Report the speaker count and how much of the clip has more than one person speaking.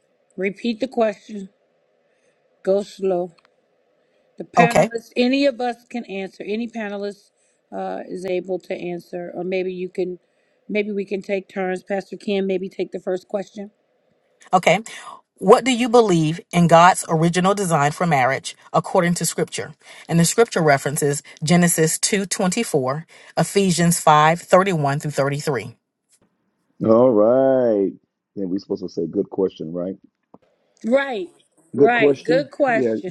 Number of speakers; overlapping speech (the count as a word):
three, about 5%